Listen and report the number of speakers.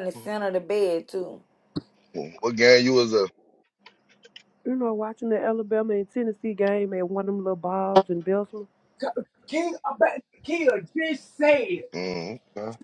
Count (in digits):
4